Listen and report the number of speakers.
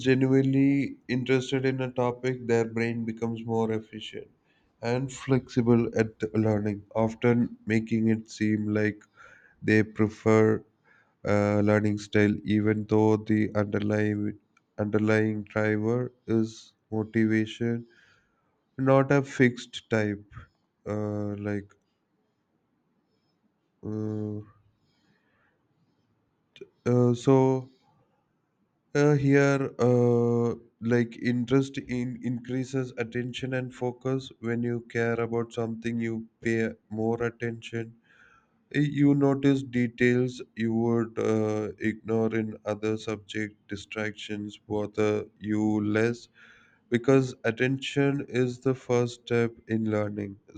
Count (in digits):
1